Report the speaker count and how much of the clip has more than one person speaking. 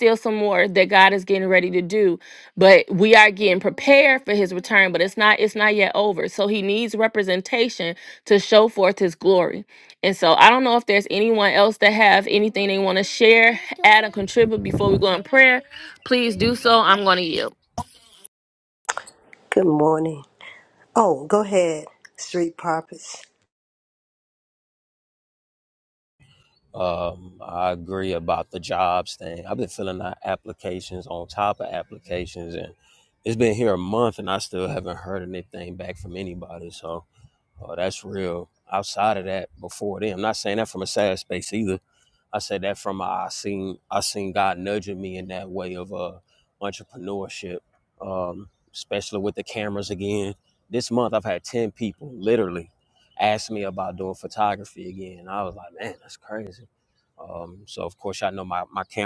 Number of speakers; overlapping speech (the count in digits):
3, no overlap